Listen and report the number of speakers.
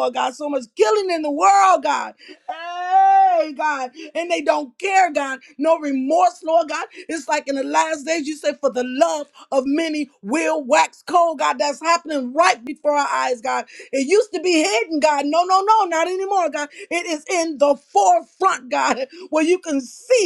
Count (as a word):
one